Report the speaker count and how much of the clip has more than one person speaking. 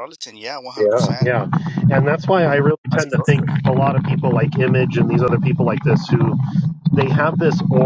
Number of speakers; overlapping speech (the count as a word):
two, about 14%